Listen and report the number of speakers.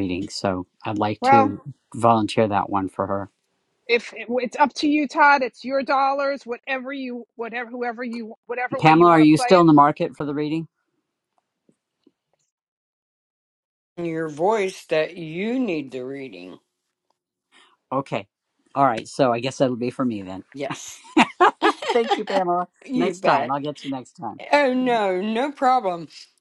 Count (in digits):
3